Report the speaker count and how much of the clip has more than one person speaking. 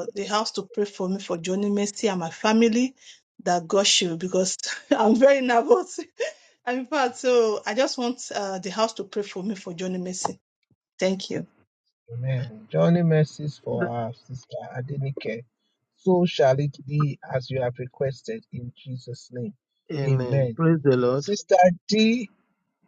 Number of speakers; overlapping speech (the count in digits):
3, about 2%